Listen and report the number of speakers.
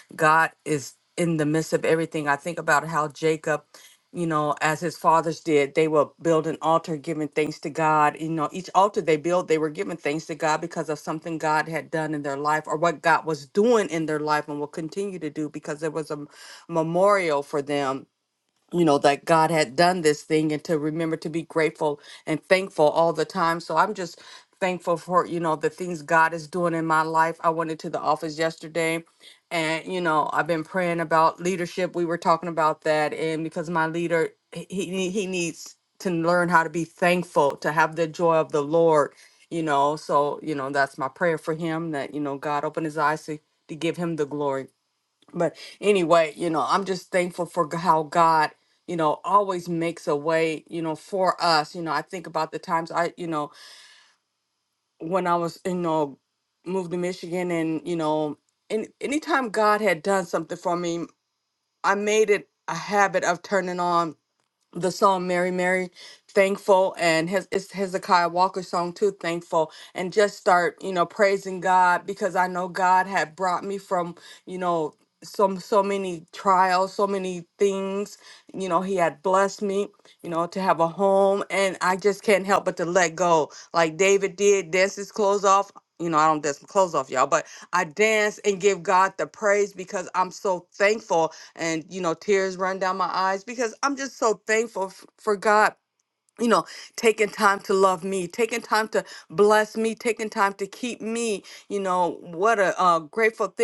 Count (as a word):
one